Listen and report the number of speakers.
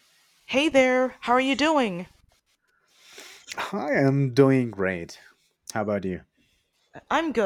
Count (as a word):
two